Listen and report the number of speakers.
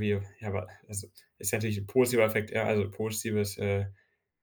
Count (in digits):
1